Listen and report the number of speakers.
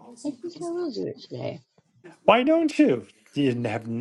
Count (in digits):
2